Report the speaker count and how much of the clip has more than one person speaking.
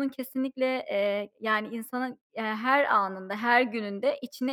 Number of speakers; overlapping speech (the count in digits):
1, no overlap